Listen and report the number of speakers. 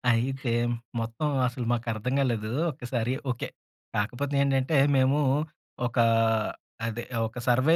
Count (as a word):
one